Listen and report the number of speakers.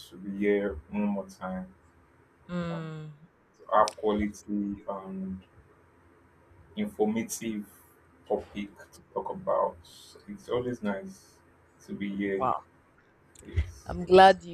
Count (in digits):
2